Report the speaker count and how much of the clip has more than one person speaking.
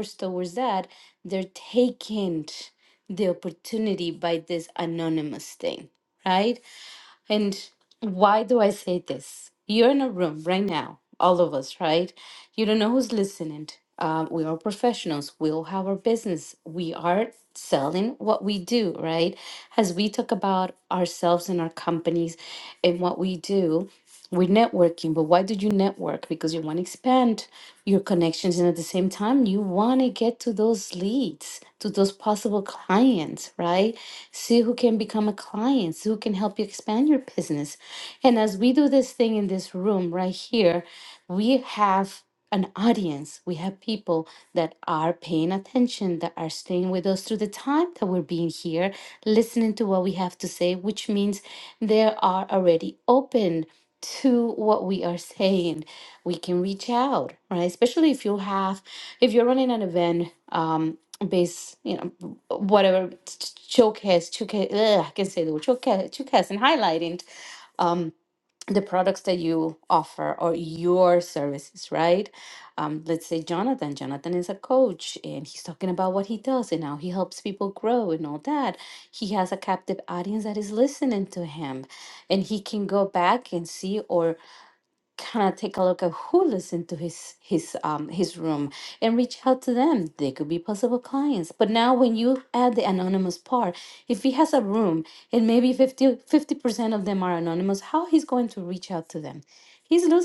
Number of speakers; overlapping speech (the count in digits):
1, no overlap